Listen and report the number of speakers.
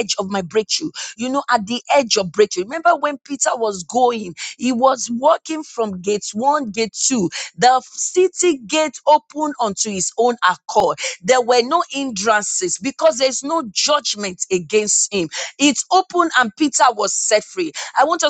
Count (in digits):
1